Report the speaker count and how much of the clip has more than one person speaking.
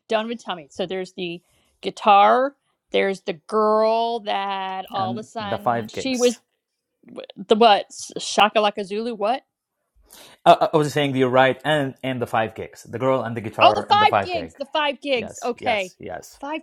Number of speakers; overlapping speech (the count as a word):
two, about 17%